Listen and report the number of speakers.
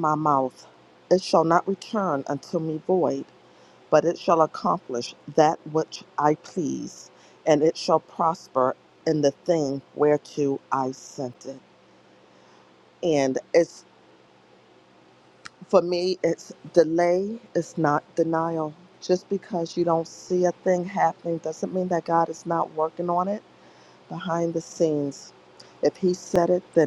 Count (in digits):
1